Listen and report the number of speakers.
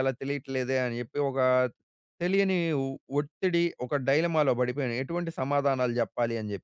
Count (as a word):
one